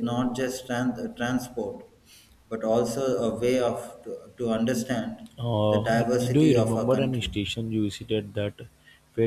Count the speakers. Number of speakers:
two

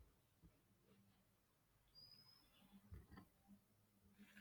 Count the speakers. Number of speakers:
zero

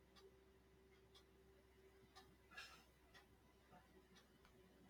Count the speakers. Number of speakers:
zero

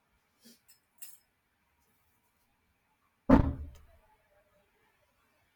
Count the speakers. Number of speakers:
zero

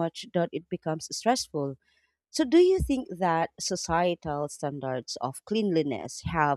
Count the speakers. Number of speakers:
one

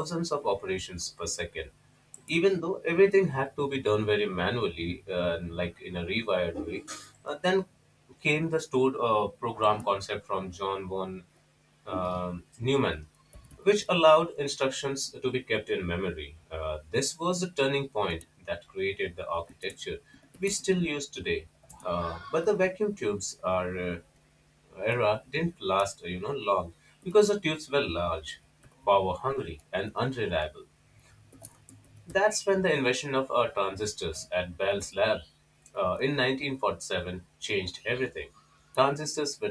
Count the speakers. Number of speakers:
one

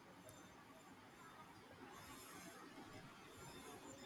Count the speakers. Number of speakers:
zero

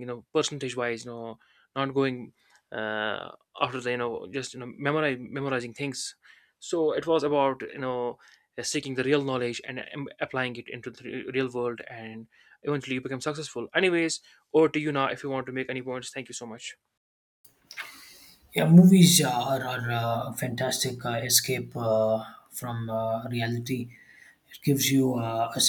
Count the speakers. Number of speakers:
two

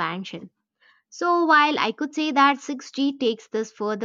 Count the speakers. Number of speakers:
one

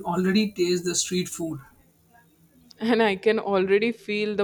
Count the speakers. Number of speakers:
two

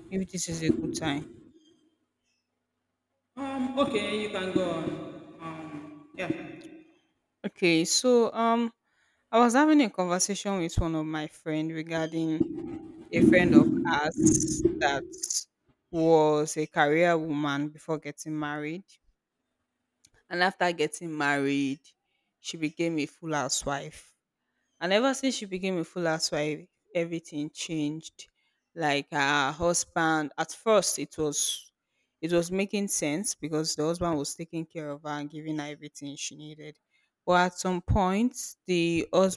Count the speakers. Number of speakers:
two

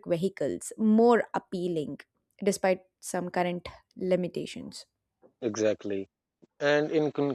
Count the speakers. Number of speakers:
two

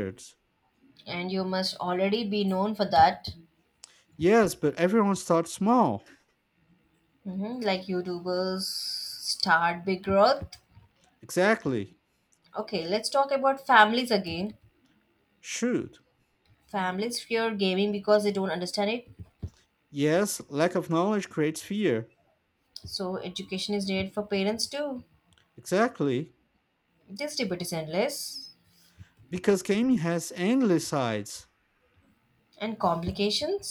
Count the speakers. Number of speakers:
two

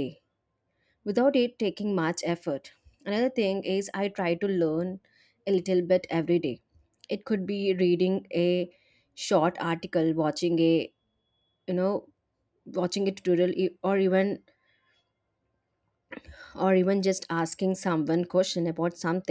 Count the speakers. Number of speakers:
one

